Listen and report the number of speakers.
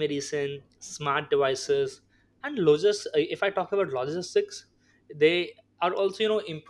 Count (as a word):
one